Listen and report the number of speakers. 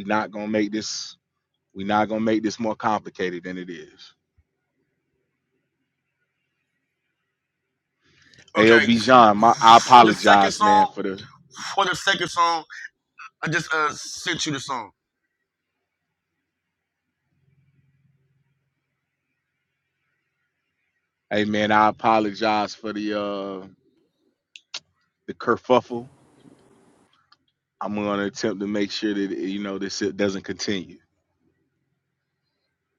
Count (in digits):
2